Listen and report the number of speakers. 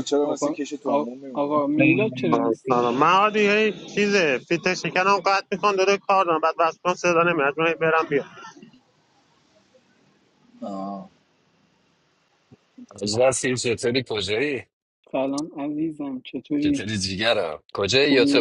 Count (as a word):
four